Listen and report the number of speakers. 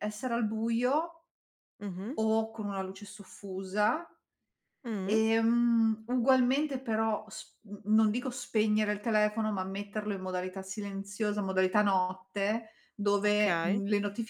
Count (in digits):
2